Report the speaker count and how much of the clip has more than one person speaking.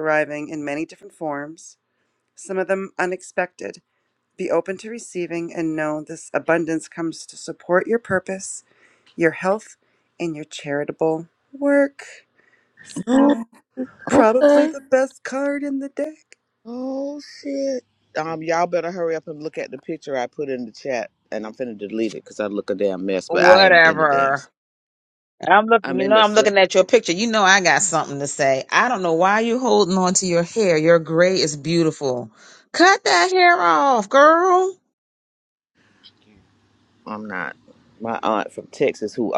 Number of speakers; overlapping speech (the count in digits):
3, about 7%